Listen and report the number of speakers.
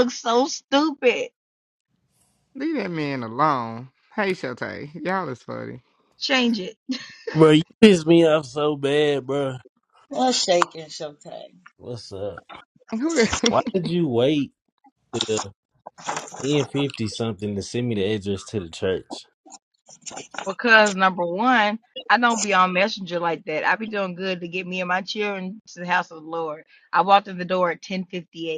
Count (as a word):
four